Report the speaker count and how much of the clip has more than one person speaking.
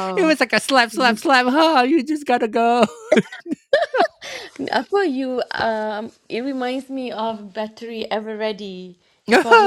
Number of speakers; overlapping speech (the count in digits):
2, about 3%